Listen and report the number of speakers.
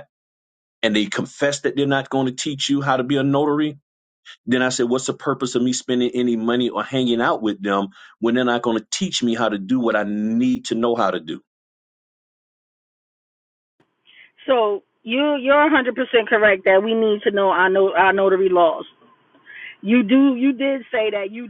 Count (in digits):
2